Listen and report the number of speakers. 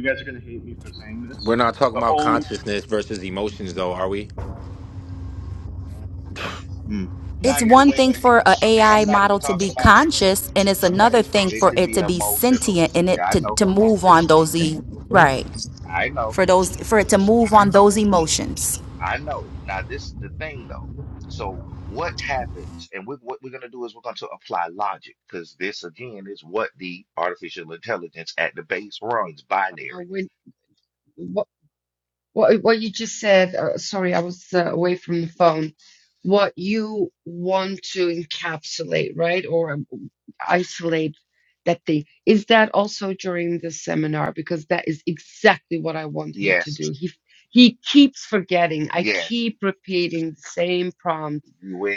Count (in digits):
5